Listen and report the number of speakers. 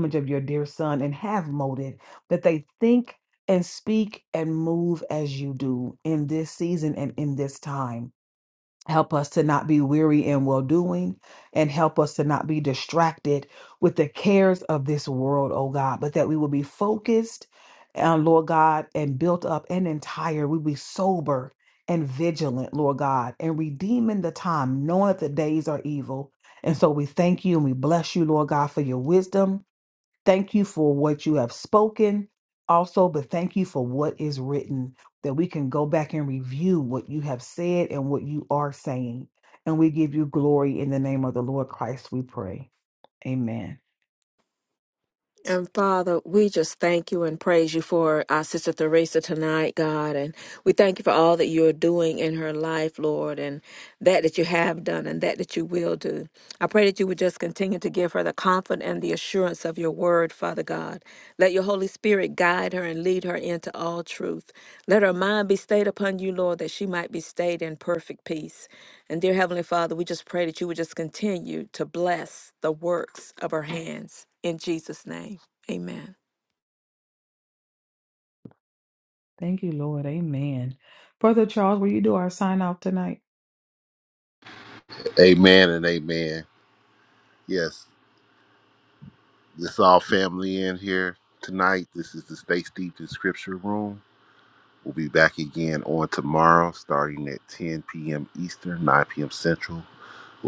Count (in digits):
3